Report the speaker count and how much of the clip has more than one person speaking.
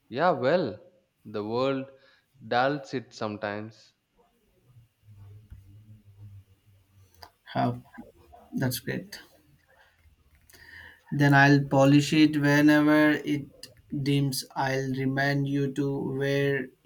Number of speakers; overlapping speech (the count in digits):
2, no overlap